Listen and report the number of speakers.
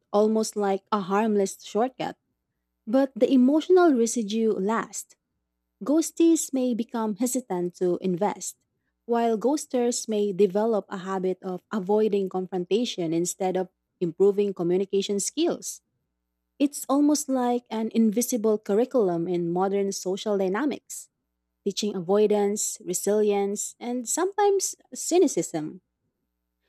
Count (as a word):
one